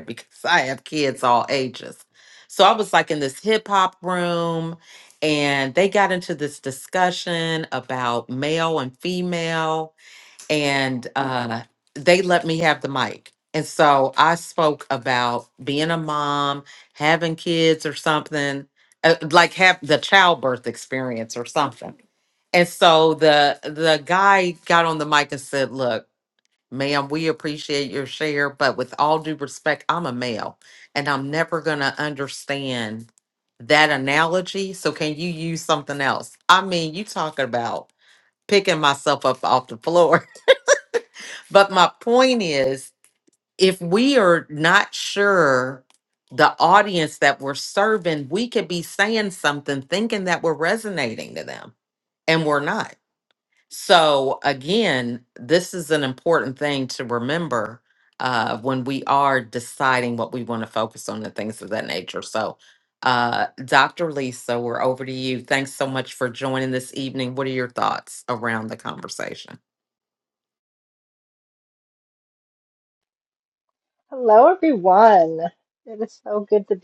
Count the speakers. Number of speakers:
two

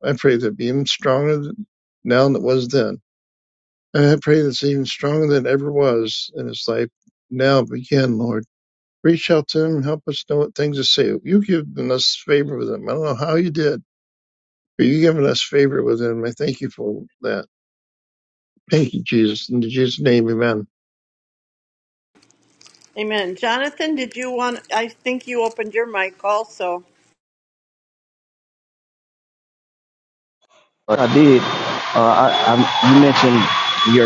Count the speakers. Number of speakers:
three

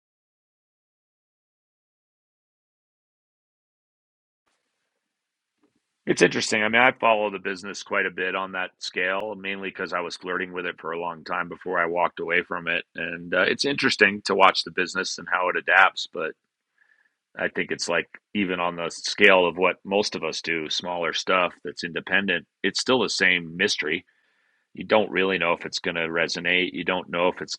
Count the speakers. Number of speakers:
one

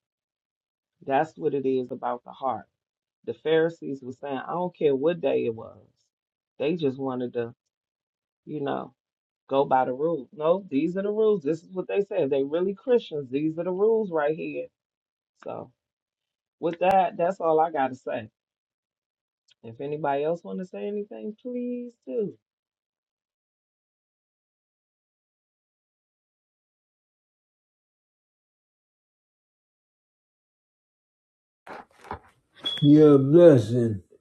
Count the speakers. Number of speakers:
two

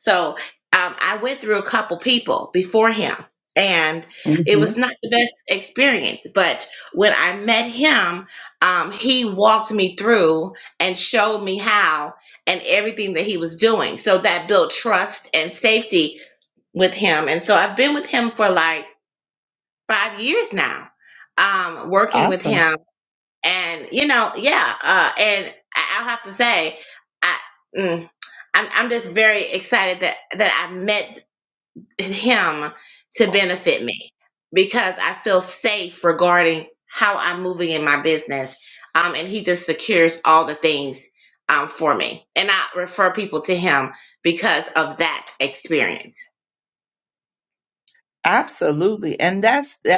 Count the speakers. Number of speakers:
two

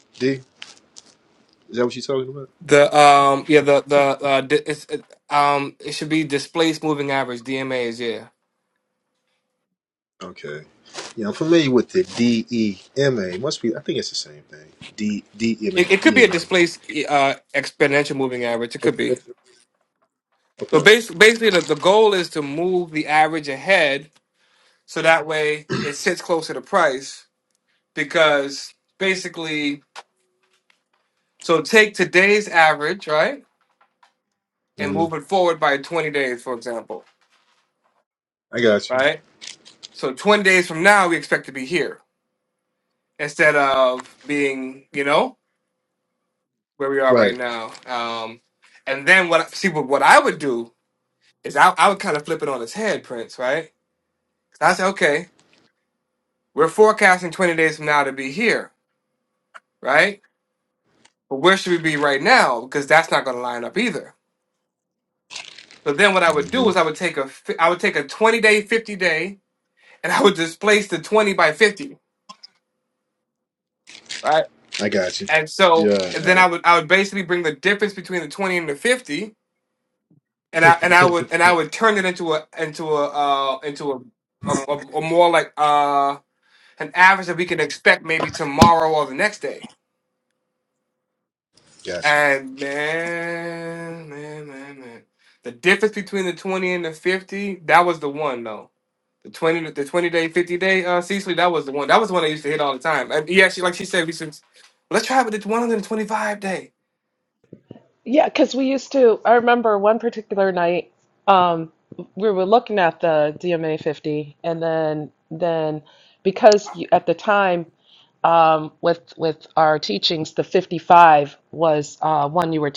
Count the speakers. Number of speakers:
three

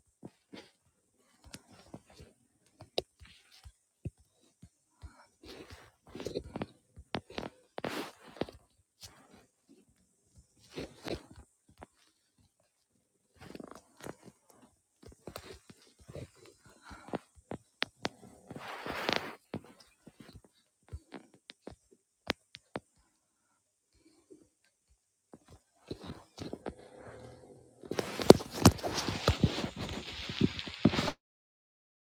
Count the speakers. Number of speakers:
zero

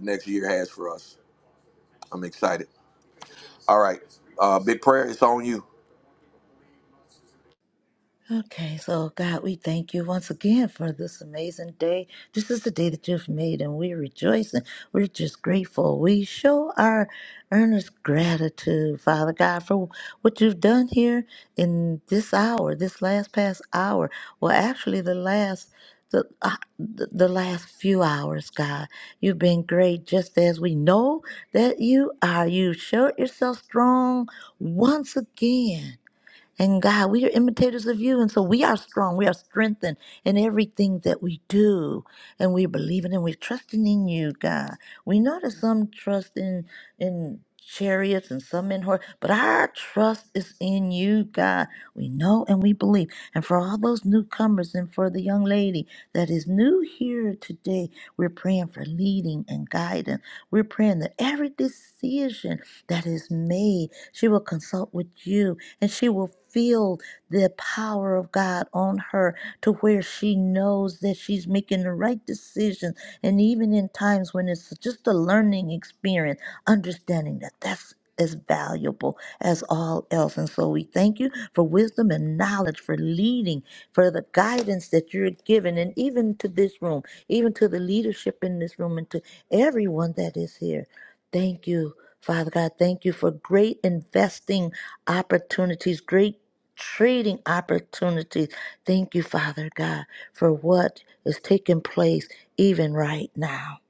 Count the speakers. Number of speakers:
two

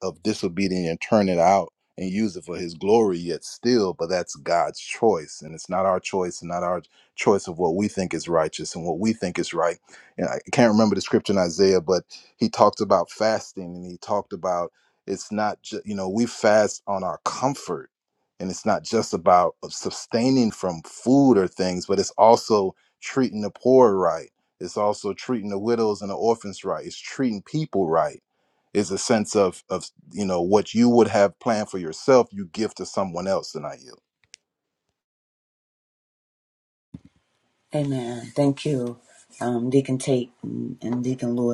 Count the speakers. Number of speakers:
two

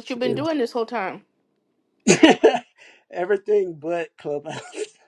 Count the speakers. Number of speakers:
two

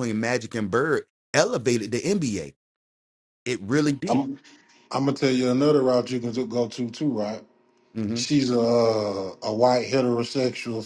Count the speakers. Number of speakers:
two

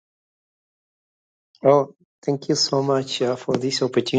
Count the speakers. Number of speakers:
one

